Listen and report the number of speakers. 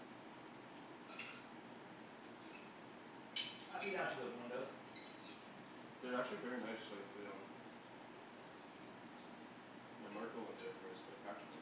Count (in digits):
2